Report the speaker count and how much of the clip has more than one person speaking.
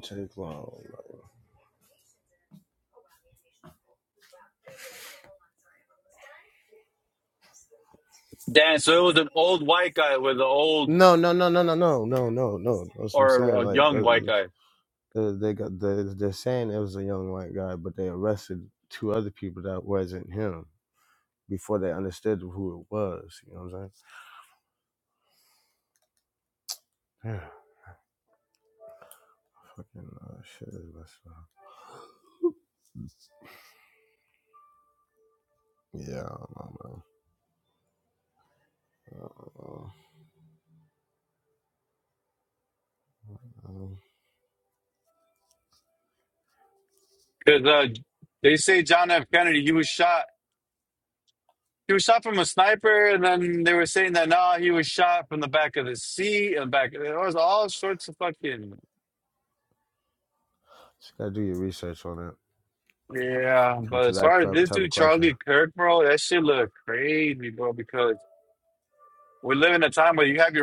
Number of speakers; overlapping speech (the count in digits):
2, about 3%